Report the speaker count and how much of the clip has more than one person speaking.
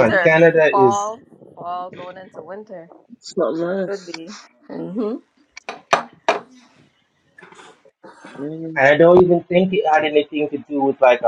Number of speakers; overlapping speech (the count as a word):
three, about 11%